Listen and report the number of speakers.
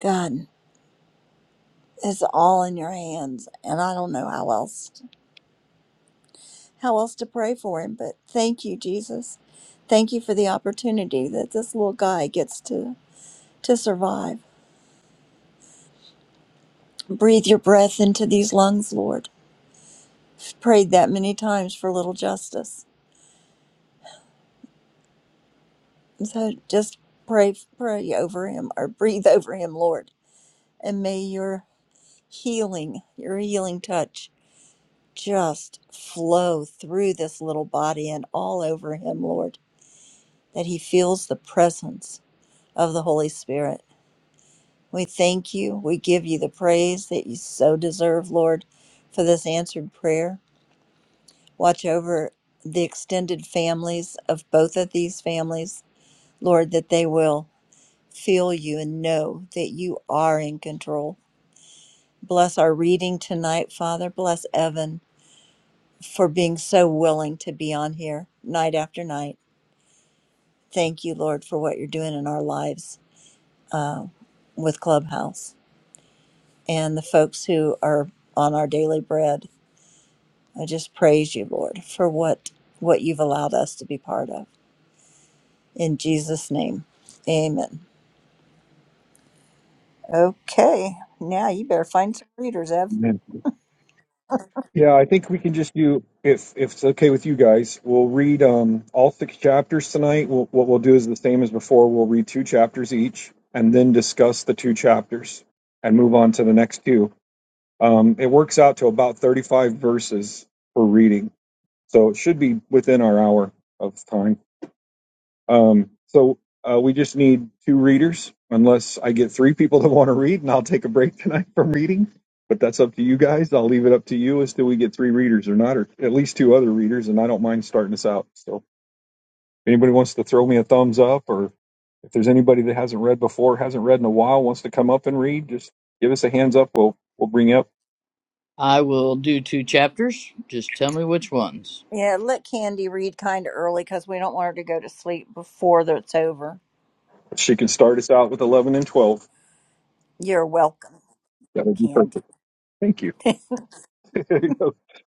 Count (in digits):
3